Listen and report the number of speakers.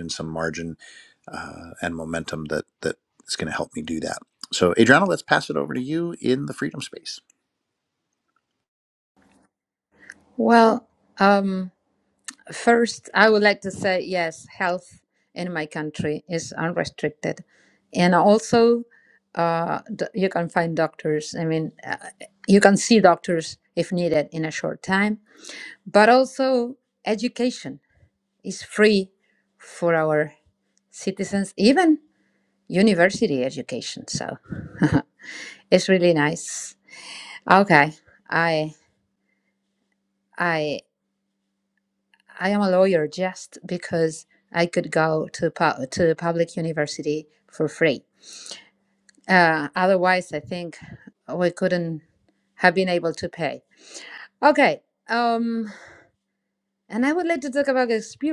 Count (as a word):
two